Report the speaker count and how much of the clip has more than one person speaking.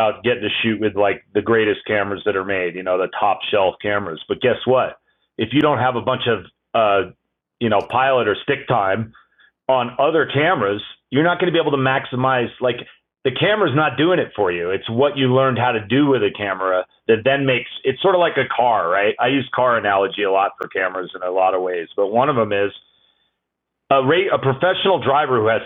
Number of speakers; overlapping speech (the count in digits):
1, no overlap